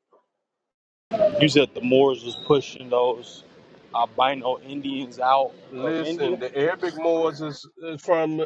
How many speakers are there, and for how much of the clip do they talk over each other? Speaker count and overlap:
2, about 9%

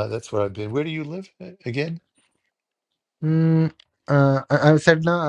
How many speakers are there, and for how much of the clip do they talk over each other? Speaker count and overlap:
2, no overlap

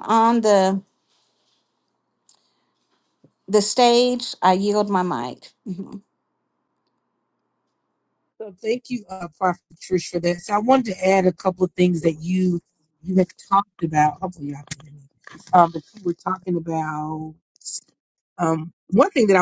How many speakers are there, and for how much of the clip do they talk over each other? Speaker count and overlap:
2, no overlap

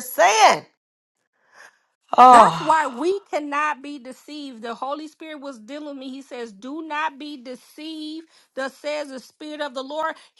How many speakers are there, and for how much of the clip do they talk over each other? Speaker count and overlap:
2, about 6%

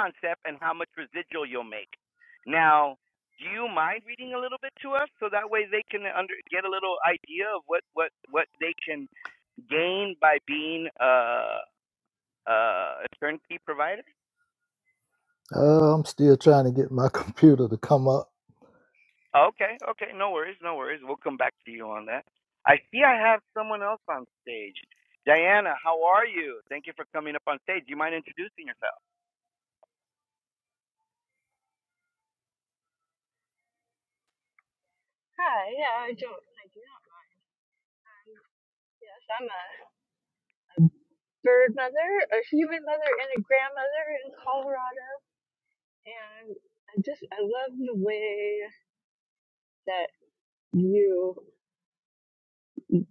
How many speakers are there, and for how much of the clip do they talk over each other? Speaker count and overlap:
3, no overlap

